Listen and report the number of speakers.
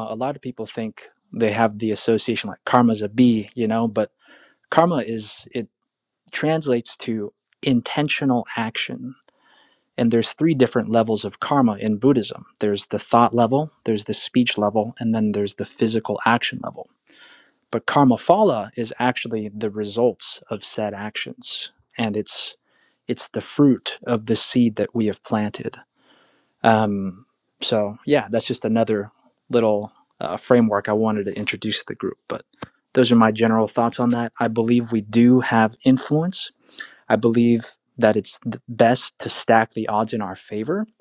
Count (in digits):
1